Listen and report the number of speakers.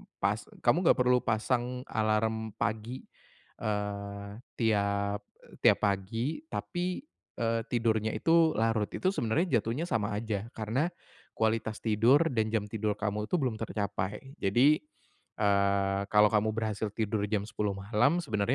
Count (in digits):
1